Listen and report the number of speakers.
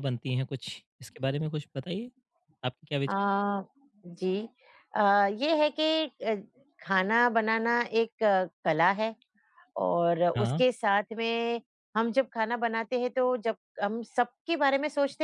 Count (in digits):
2